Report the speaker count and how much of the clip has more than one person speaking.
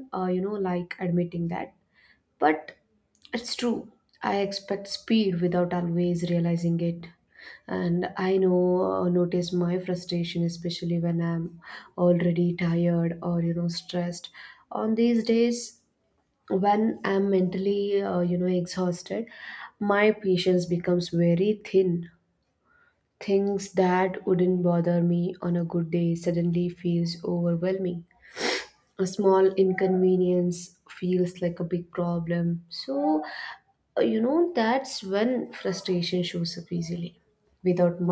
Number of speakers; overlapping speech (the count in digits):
1, no overlap